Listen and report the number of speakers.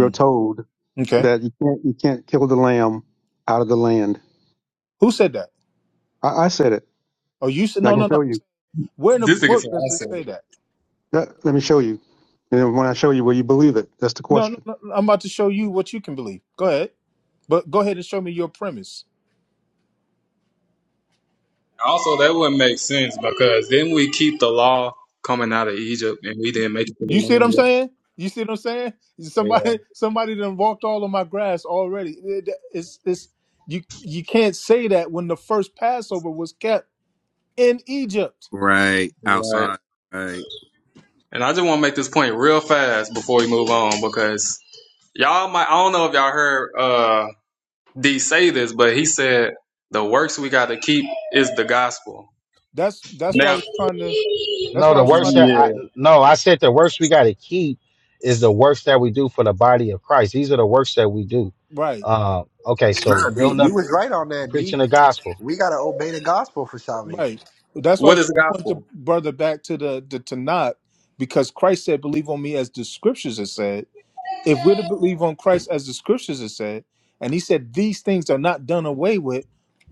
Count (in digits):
6